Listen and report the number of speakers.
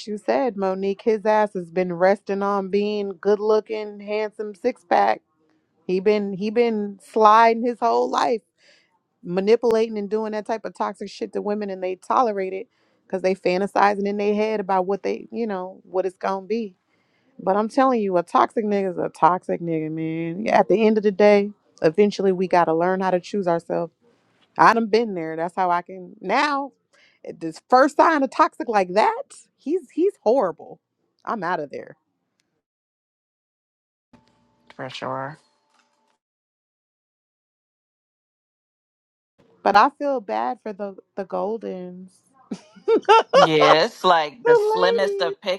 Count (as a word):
two